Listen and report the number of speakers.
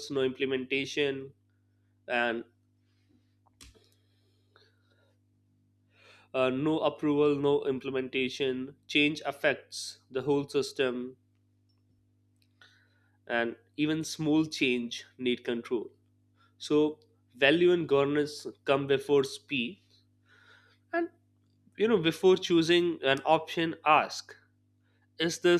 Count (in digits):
1